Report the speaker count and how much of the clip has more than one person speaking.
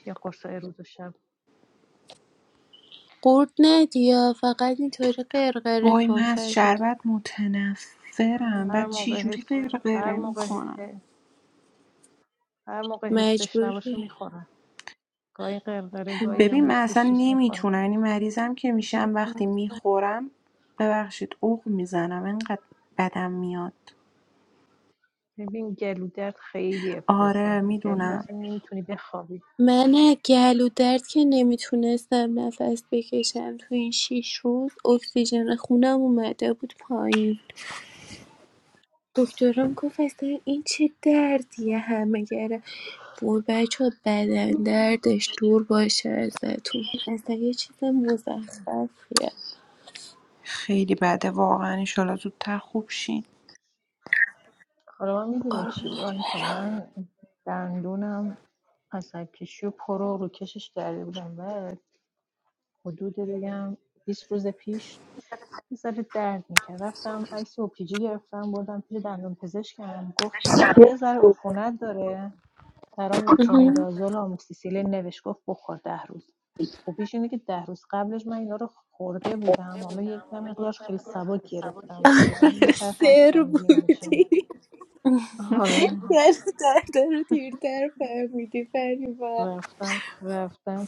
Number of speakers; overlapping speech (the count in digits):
3, about 9%